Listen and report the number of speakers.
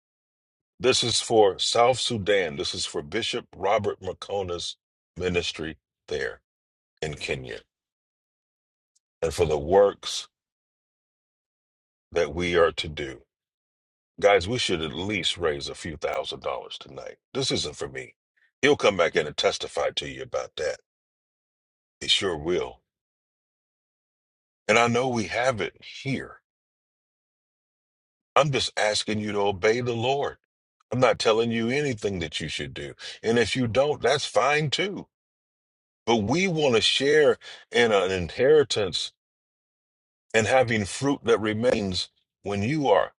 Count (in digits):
1